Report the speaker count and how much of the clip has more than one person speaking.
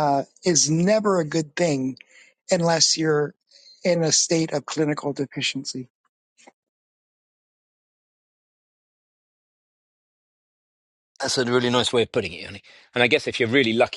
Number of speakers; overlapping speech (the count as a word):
two, no overlap